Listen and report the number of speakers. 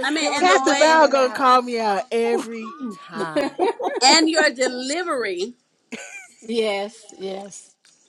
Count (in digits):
3